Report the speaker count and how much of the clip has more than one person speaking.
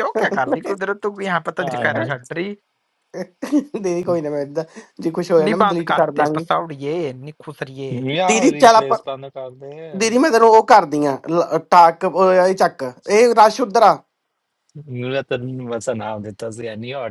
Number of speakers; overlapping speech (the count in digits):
3, about 12%